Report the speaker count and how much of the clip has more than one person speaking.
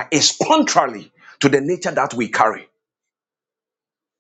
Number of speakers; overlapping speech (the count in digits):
1, no overlap